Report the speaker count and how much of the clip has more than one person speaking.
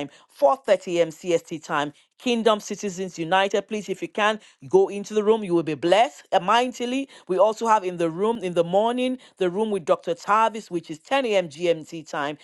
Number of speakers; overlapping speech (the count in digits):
1, no overlap